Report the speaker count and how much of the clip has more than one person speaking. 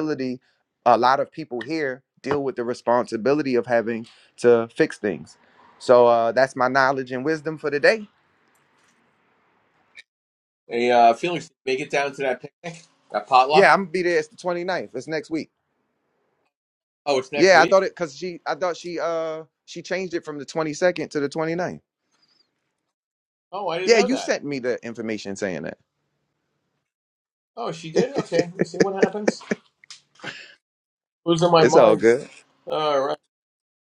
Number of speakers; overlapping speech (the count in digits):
2, about 4%